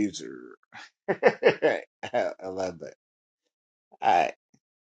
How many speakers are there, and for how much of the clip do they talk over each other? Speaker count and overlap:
one, no overlap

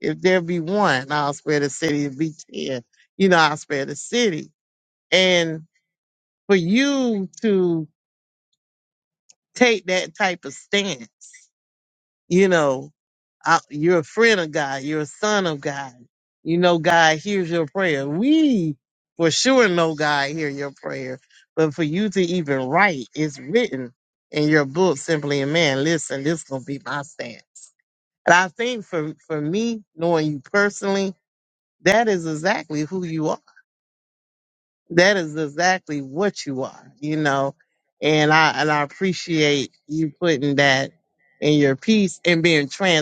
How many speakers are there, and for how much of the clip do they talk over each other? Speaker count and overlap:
one, no overlap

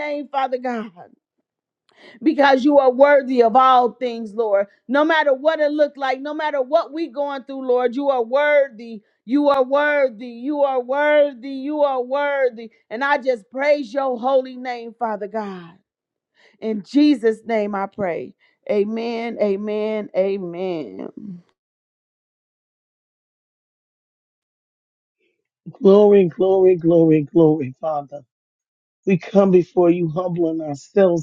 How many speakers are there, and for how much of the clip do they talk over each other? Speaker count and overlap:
two, no overlap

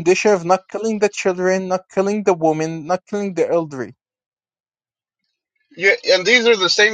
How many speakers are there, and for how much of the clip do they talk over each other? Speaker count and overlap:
two, no overlap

